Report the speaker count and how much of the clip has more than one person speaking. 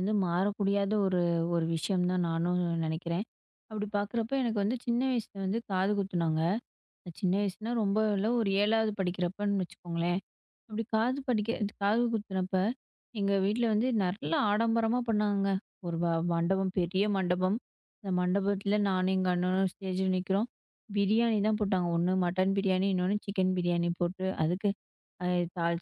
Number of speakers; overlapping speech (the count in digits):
1, no overlap